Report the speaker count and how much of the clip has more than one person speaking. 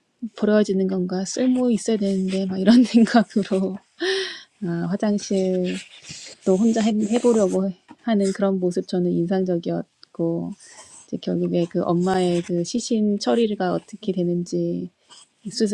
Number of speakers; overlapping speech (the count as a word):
one, no overlap